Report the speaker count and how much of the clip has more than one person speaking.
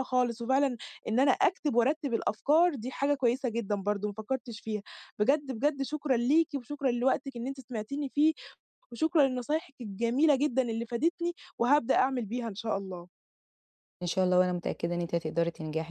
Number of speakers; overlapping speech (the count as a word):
two, no overlap